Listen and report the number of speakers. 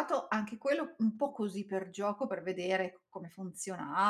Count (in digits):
1